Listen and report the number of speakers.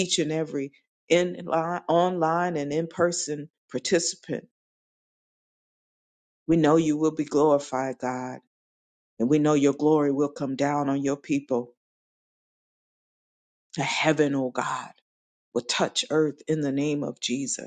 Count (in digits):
1